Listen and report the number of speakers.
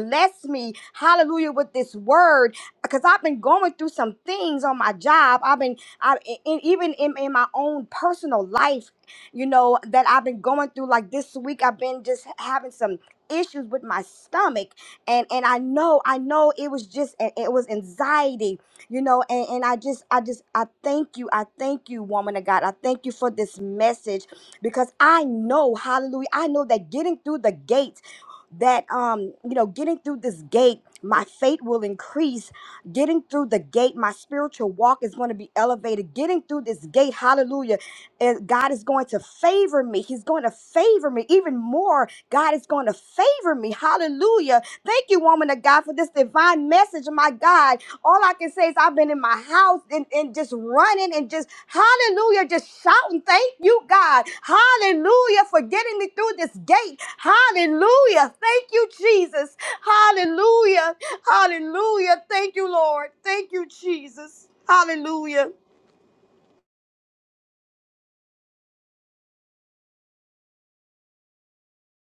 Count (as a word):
one